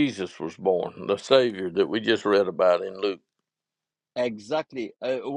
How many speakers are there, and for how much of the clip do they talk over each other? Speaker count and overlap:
2, no overlap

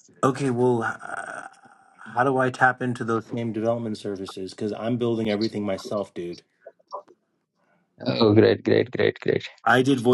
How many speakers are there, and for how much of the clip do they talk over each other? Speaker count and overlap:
2, no overlap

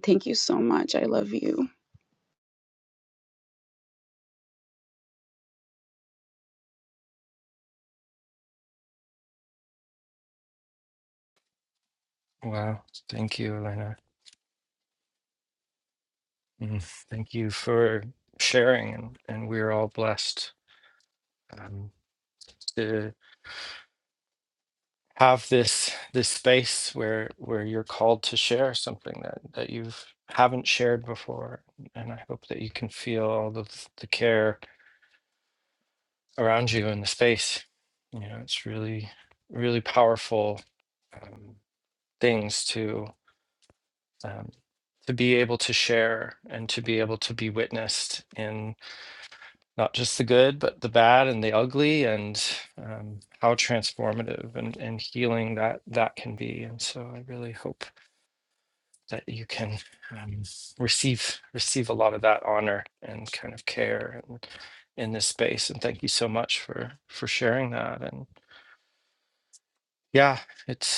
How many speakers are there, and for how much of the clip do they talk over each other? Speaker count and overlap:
2, no overlap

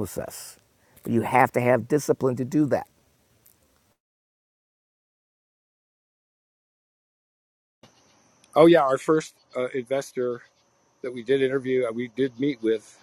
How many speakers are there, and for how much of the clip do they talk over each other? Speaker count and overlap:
2, no overlap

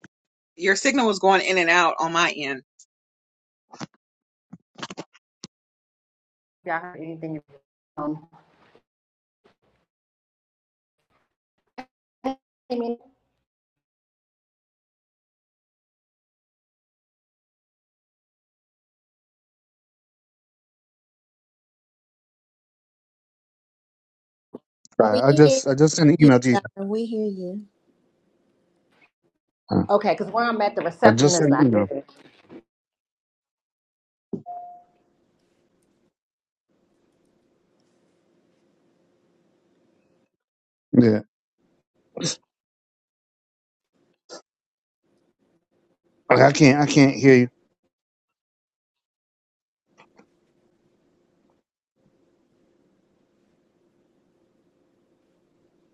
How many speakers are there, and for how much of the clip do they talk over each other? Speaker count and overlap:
4, about 3%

